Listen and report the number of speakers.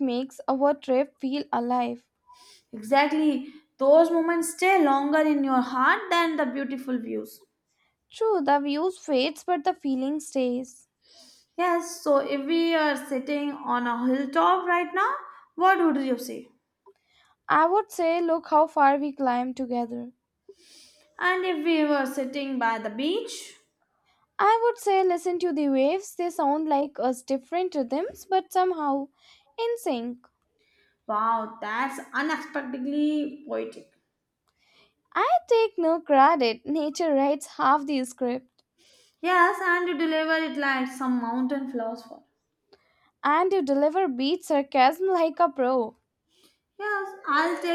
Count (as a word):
two